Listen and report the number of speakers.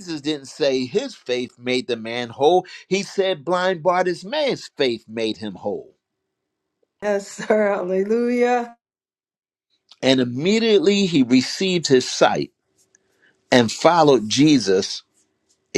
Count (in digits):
2